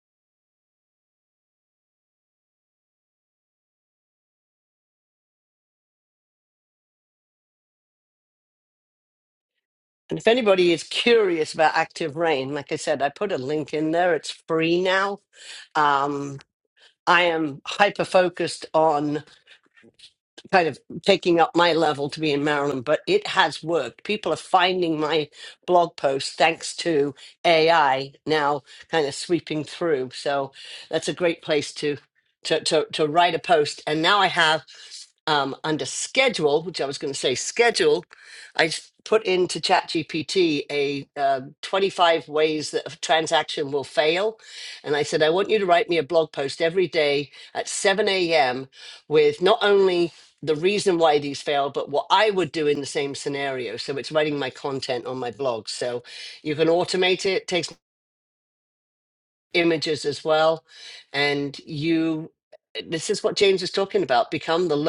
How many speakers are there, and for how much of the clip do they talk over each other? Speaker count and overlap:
1, no overlap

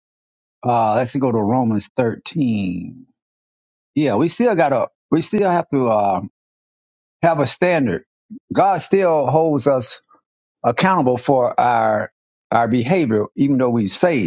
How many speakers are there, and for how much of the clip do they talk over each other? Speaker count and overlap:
1, no overlap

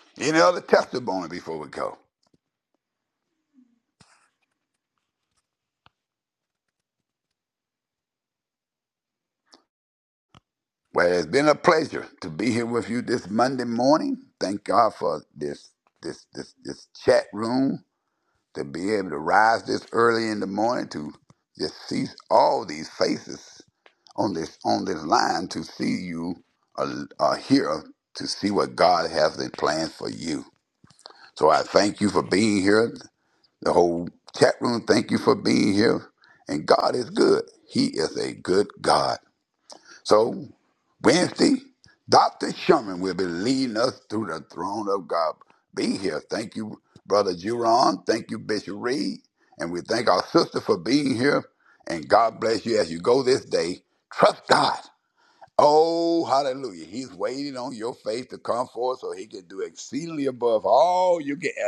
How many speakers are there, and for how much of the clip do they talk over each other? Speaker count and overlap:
1, no overlap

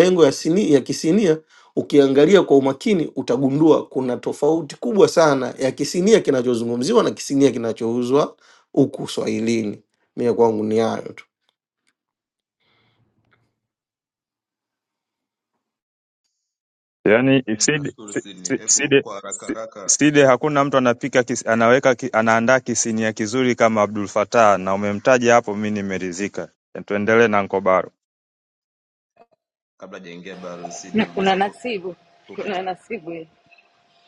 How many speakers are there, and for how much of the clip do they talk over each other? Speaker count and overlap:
4, about 8%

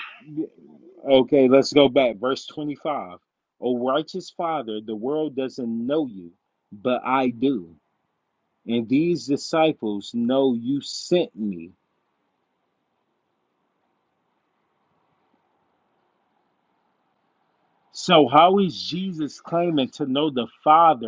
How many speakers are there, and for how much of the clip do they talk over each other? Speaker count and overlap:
1, no overlap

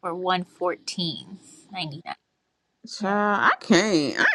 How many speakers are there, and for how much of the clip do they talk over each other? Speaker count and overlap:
2, about 5%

